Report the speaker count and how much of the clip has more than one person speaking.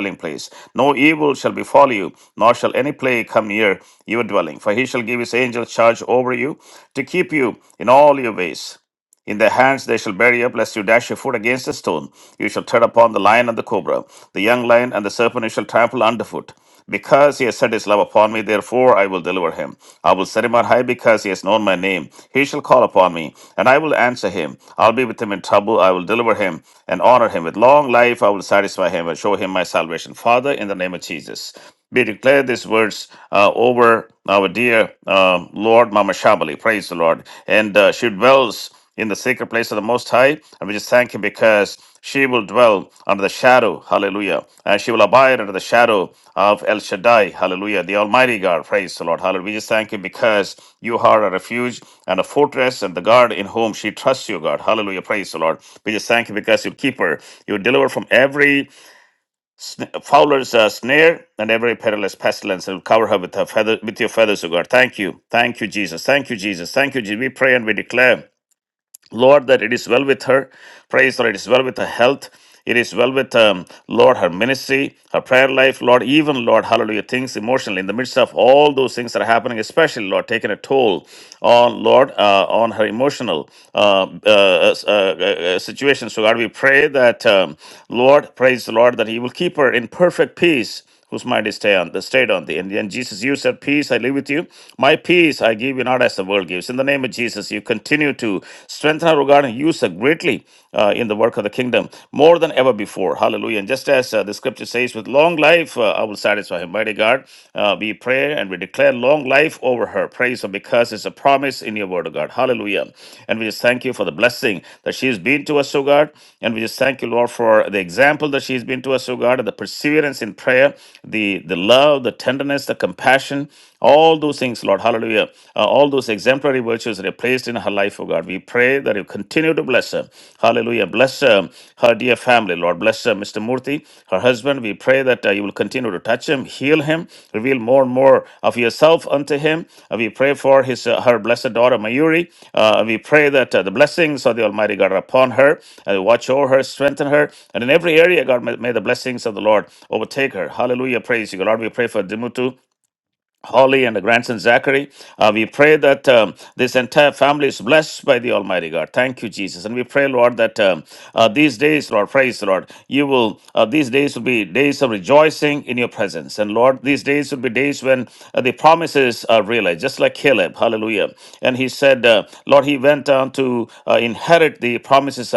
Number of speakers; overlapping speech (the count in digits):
1, no overlap